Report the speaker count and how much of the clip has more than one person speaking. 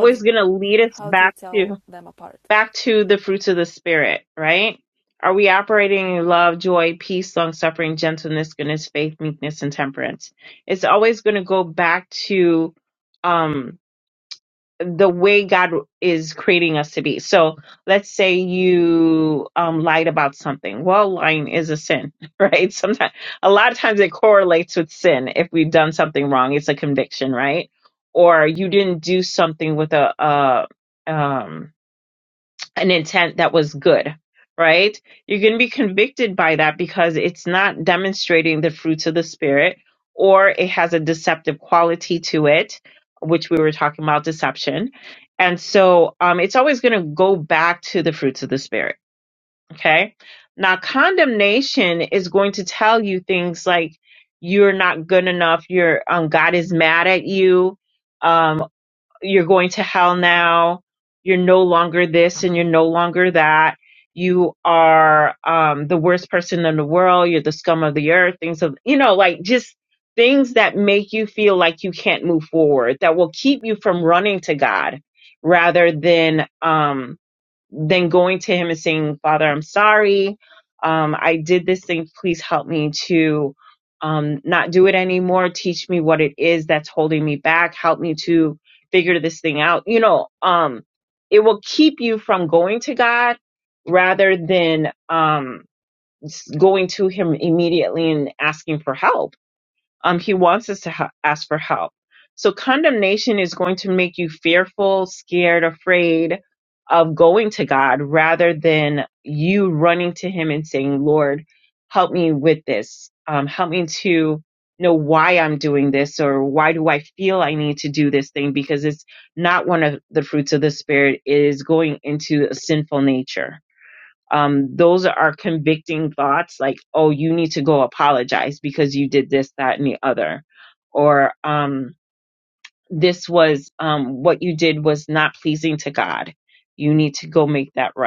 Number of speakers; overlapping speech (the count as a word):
two, about 1%